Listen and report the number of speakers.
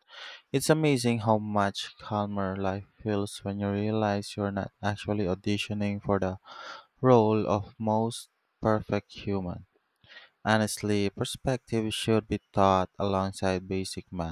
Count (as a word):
one